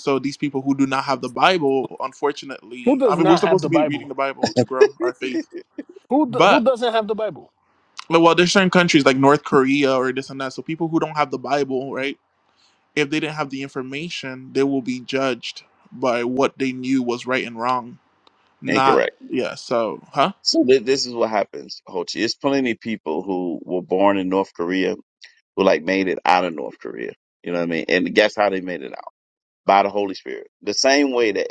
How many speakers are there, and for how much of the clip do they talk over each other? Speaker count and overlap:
3, about 6%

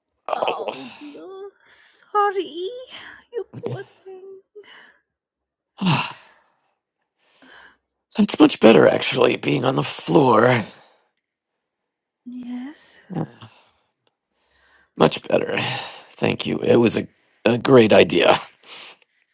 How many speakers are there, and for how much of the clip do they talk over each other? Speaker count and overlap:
2, about 2%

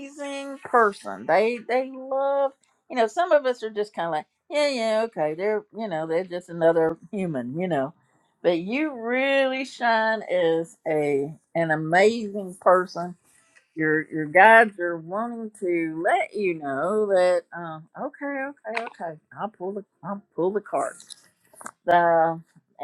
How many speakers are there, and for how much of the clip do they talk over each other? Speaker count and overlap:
1, no overlap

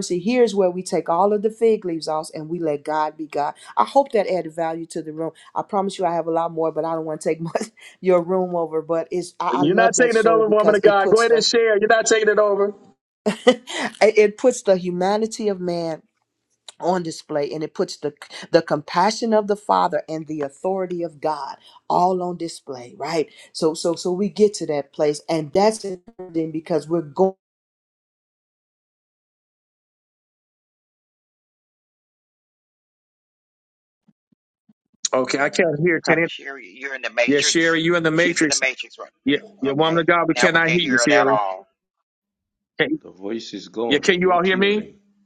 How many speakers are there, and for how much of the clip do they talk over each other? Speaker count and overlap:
4, about 14%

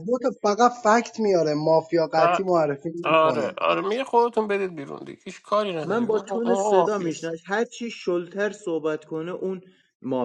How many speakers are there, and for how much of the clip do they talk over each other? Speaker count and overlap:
3, about 20%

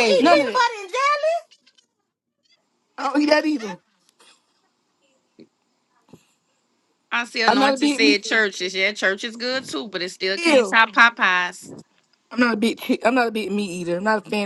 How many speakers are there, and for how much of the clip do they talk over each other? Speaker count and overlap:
3, about 12%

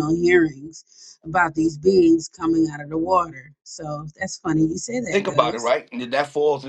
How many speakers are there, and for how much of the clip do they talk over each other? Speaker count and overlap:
2, about 6%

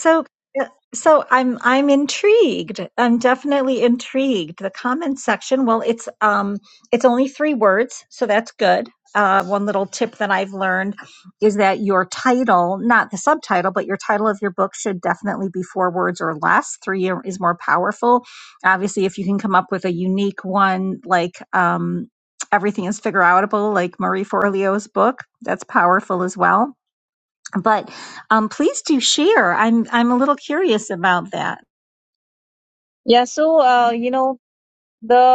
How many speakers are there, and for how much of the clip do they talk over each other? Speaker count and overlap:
2, no overlap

